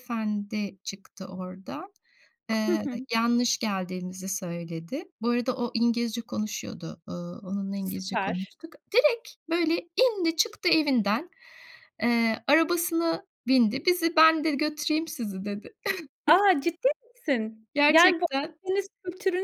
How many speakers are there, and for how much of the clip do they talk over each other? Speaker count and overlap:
two, about 7%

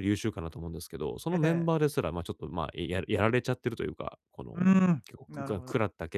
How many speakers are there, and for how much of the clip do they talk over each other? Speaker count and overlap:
two, about 14%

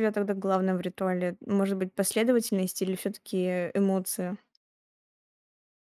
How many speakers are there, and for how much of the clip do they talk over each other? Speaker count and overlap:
one, no overlap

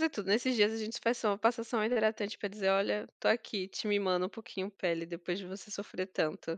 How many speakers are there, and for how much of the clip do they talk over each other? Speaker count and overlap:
one, no overlap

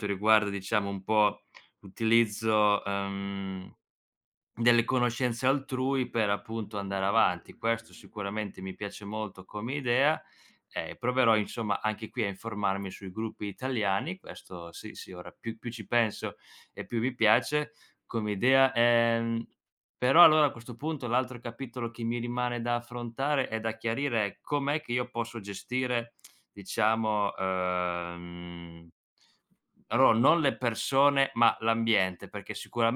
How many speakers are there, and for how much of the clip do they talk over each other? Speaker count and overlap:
one, no overlap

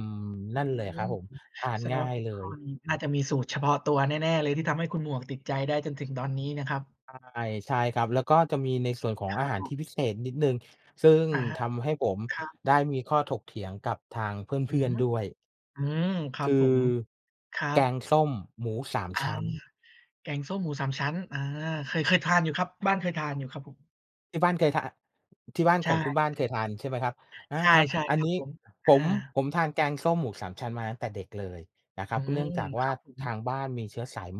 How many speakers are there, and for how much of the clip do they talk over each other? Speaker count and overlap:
two, about 14%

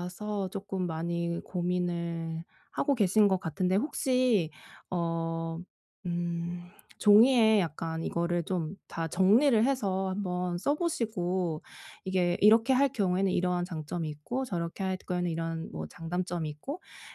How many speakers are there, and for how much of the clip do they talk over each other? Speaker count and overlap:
one, no overlap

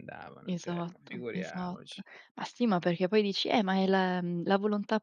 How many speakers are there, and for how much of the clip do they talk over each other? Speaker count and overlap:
two, about 31%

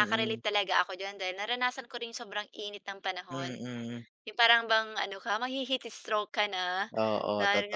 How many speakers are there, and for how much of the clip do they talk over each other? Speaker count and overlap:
two, about 13%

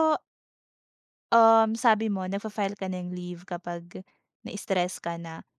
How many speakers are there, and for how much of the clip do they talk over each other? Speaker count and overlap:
one, no overlap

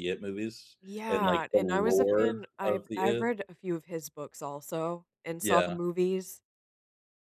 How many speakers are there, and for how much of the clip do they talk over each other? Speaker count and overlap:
two, about 35%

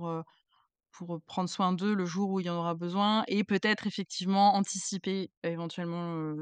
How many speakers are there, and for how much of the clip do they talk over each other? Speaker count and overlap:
one, no overlap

